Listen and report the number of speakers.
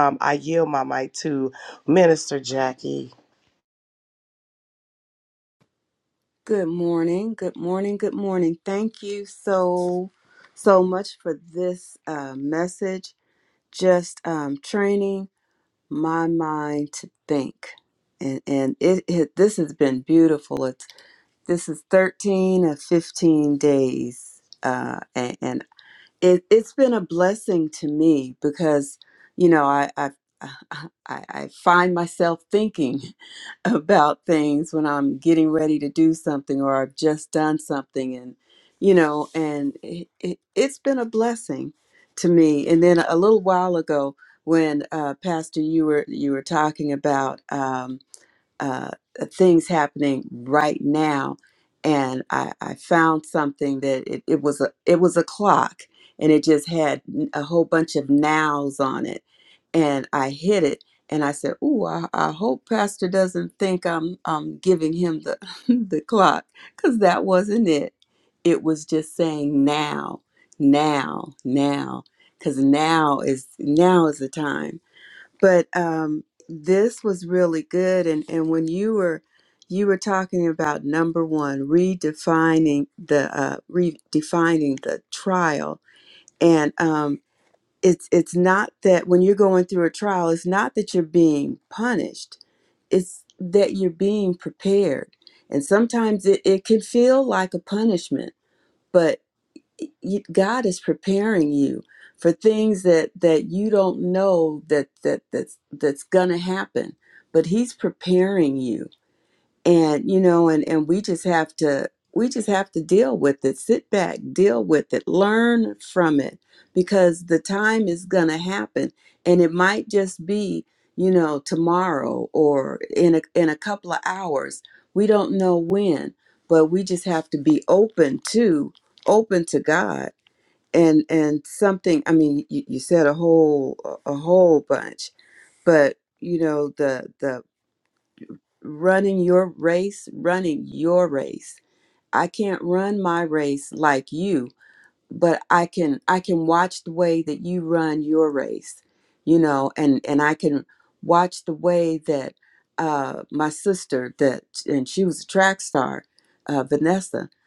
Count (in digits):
2